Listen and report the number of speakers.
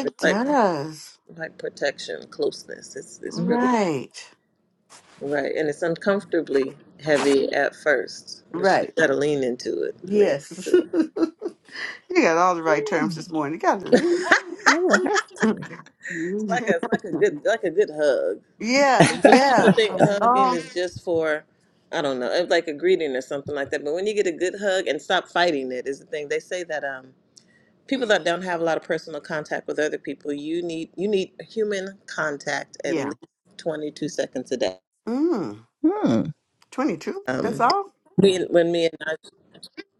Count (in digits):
3